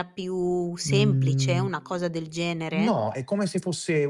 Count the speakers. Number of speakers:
2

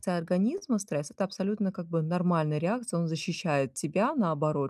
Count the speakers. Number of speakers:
1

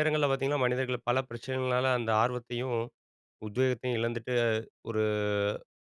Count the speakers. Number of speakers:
1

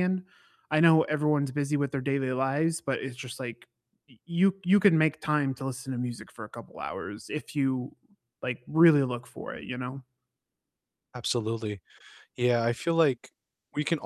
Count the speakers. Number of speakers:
2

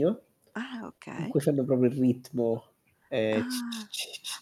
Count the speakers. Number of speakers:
2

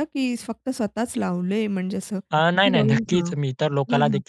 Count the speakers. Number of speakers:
2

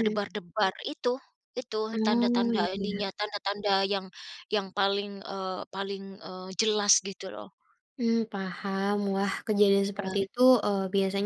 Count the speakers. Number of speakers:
2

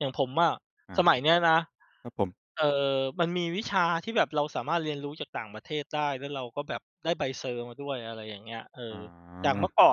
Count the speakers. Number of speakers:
2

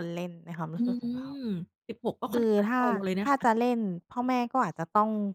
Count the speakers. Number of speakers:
2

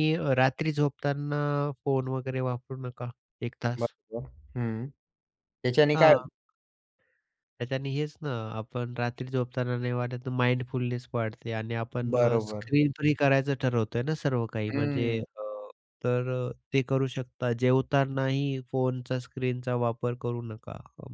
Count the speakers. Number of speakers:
2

